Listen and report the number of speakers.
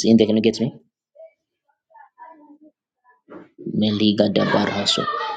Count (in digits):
1